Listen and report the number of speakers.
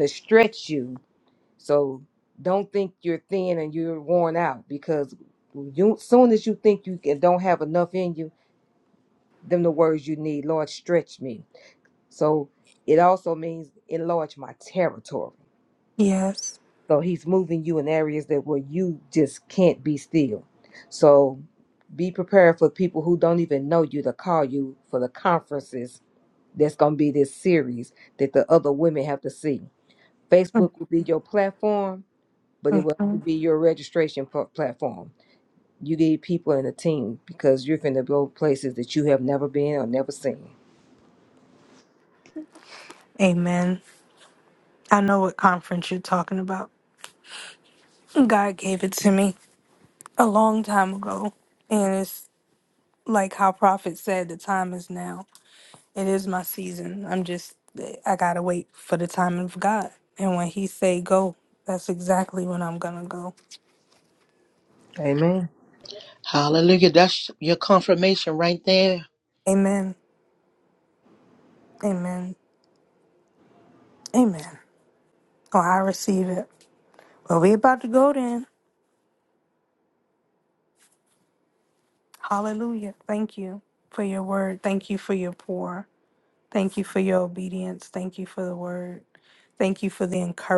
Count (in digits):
3